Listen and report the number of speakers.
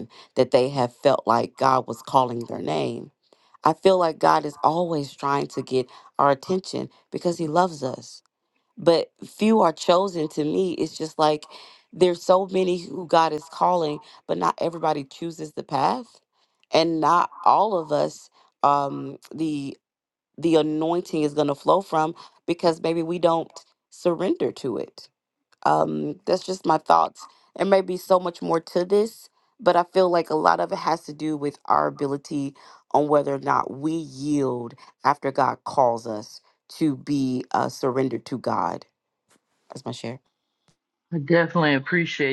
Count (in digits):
2